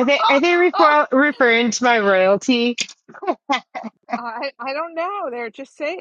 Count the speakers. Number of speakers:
2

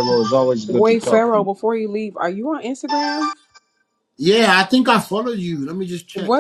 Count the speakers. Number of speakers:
3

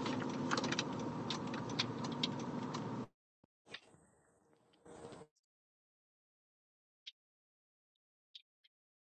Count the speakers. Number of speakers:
0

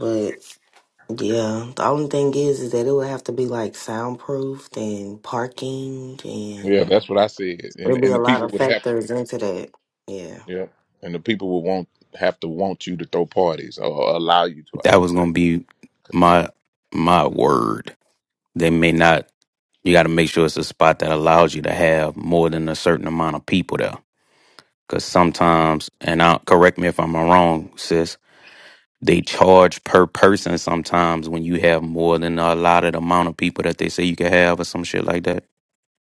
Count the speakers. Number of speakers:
3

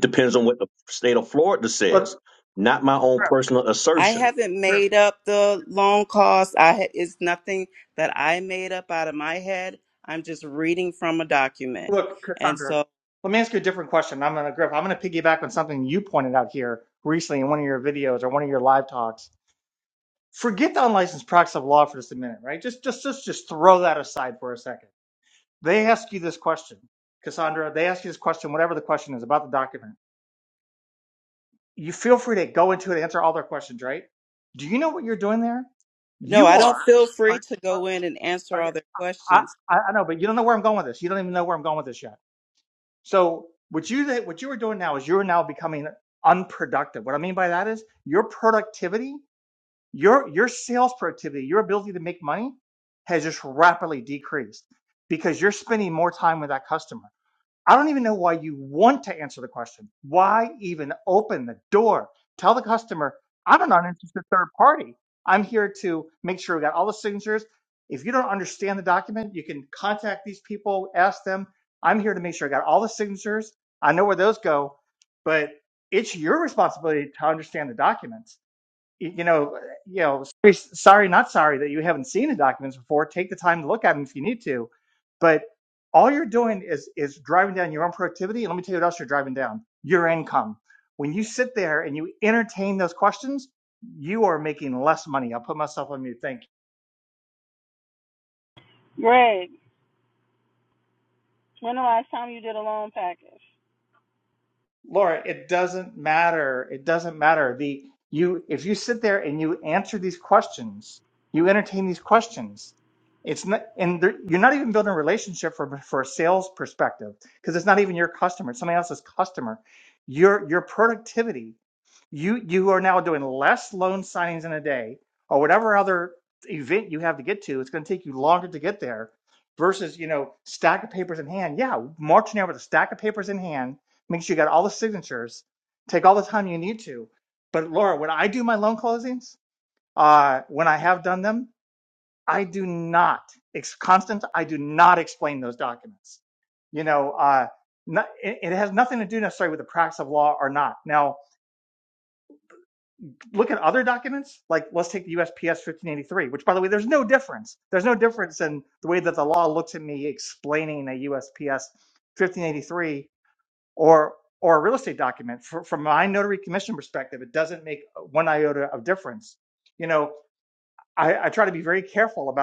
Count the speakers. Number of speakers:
4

